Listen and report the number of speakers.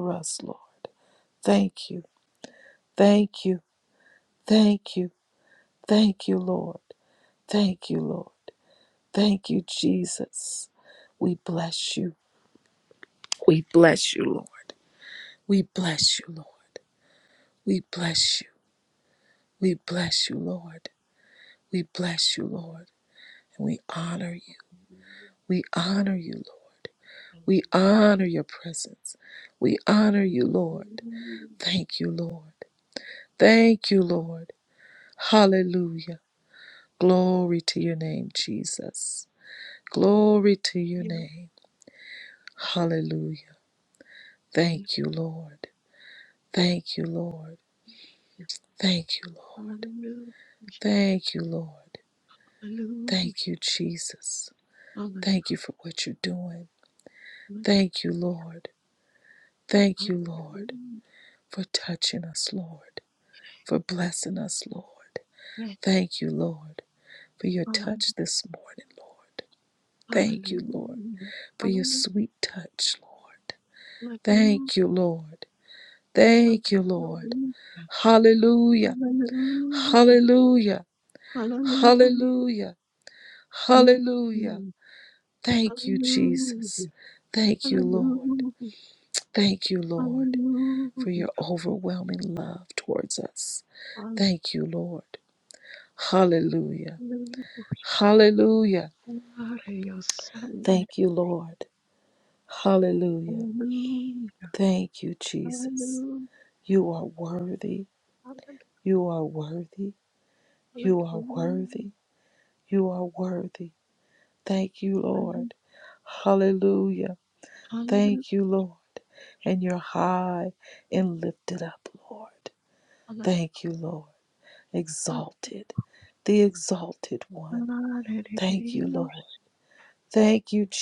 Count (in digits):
2